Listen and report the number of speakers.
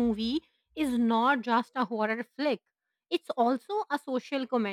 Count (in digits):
1